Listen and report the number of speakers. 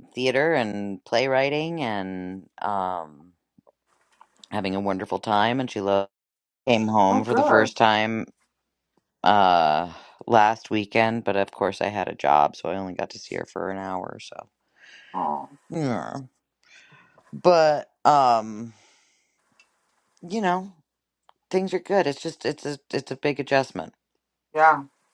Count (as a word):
two